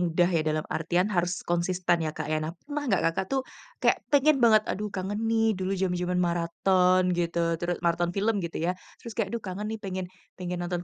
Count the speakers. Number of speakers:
one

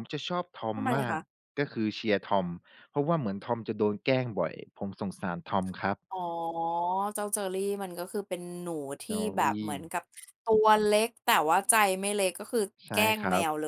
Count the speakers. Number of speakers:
two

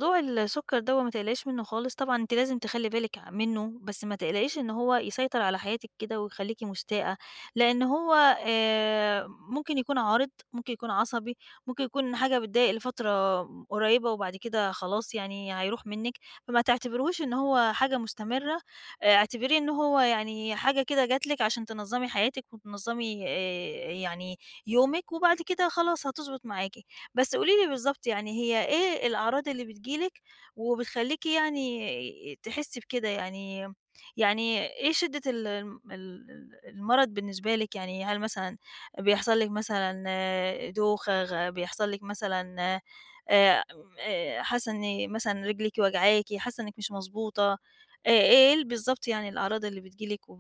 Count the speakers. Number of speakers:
one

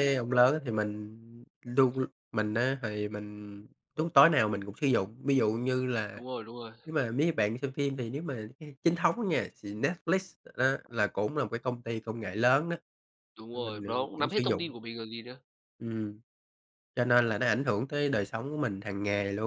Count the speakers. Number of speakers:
two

